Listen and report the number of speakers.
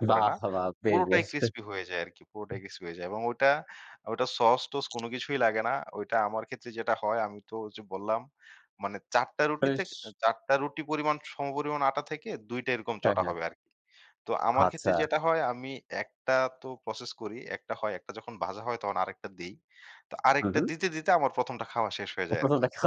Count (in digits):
2